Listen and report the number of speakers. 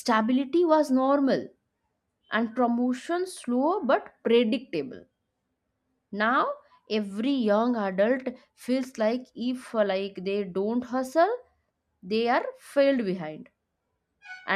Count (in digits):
1